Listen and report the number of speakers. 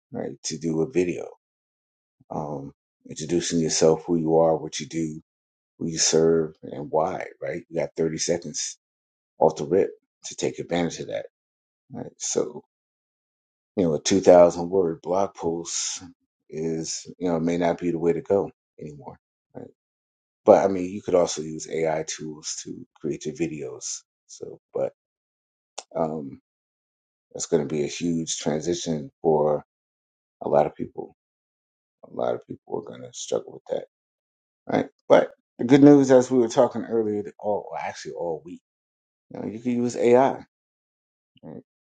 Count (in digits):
1